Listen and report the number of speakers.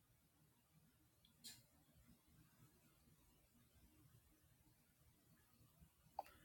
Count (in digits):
0